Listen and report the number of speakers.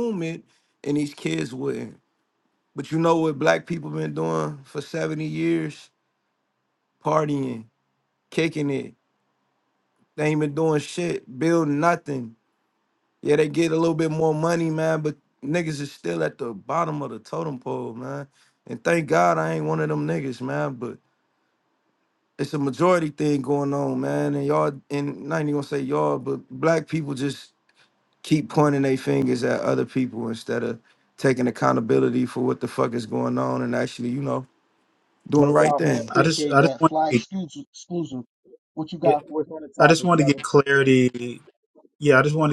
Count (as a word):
three